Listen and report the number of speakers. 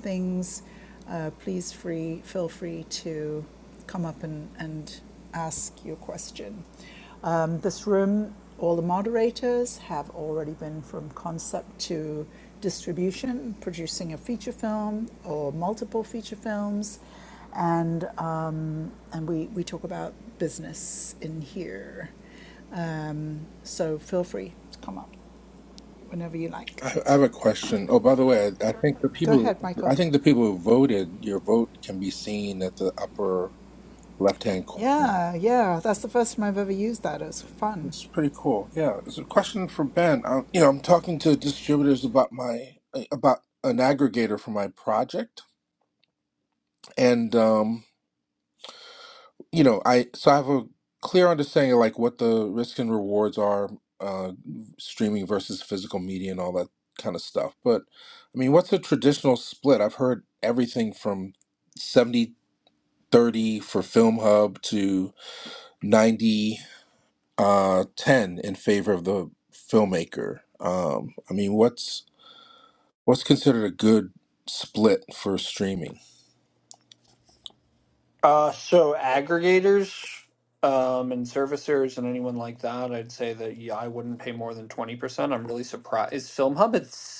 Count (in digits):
3